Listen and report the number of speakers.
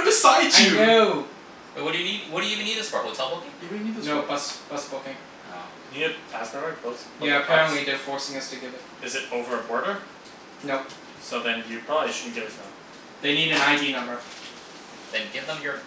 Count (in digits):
4